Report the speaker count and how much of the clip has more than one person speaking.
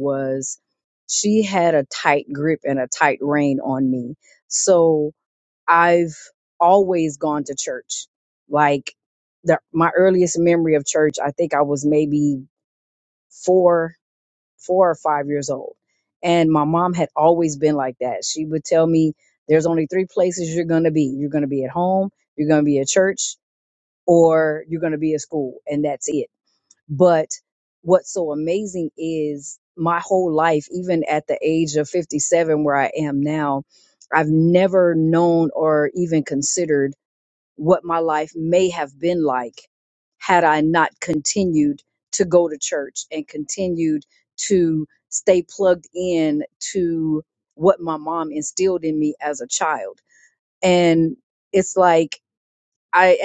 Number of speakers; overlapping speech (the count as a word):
one, no overlap